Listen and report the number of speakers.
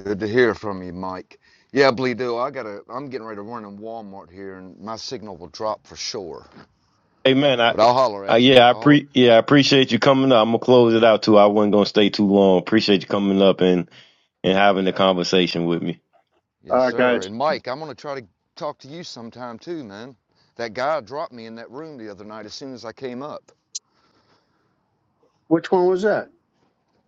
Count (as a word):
three